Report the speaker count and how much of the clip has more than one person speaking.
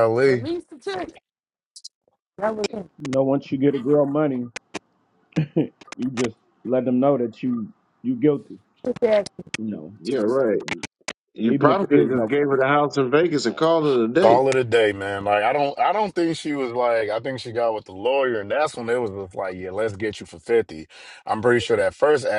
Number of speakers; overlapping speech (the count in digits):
4, about 11%